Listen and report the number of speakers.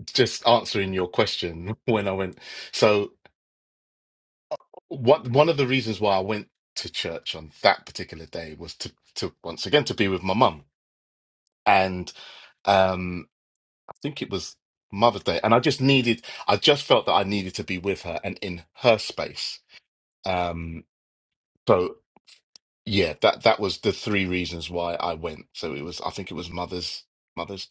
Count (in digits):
1